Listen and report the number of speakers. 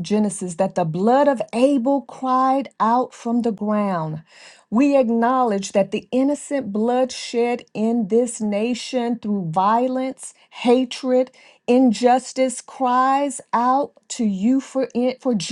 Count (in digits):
1